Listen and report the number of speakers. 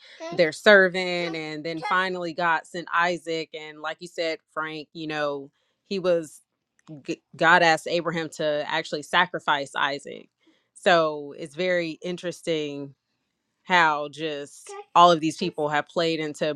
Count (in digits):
1